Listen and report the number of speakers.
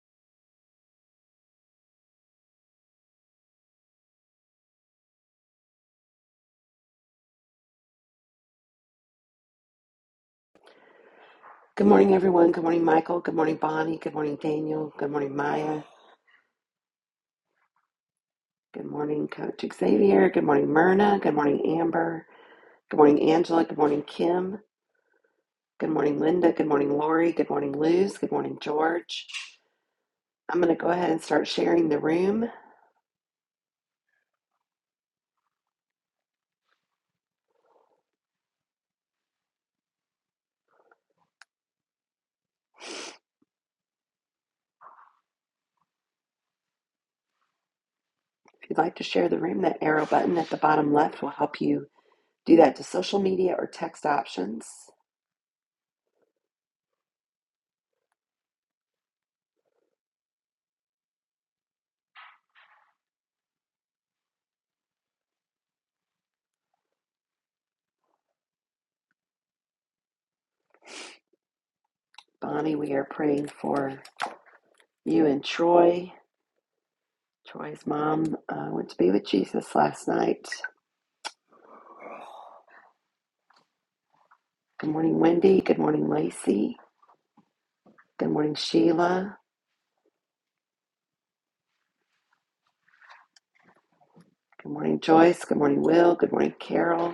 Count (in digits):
1